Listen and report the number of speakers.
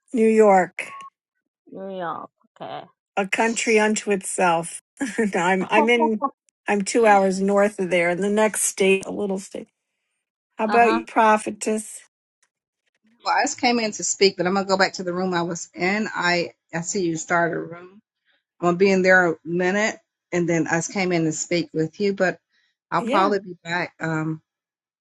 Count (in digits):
3